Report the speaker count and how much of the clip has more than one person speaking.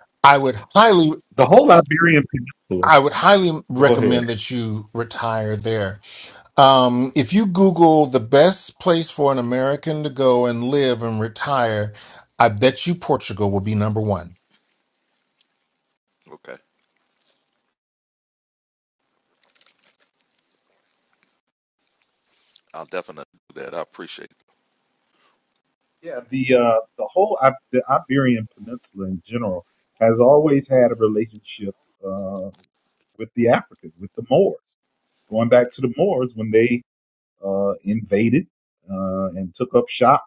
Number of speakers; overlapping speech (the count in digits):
3, about 1%